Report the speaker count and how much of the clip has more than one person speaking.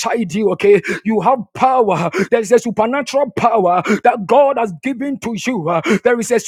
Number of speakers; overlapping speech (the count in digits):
1, no overlap